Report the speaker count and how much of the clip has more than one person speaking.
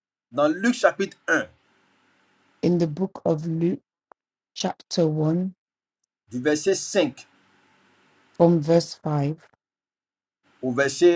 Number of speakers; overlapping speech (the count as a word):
two, no overlap